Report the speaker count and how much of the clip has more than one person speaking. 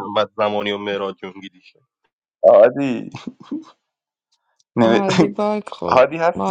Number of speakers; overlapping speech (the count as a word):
three, about 13%